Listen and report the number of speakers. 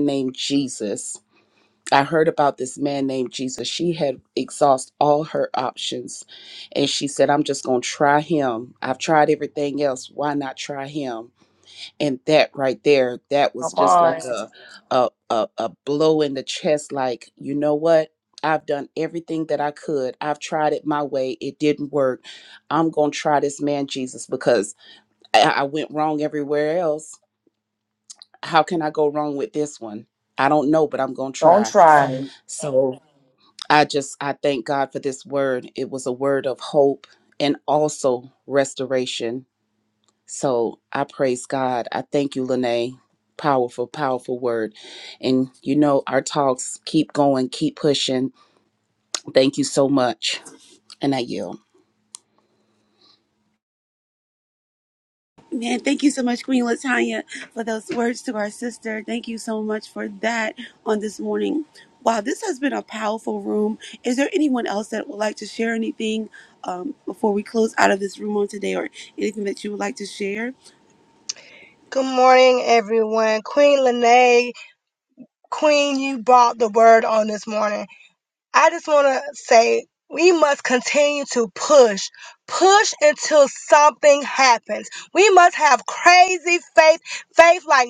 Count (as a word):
four